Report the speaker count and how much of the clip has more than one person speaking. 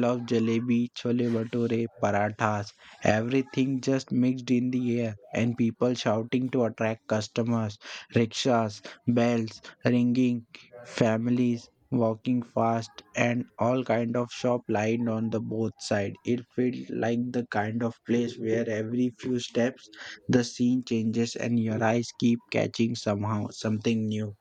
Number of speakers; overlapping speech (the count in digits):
1, no overlap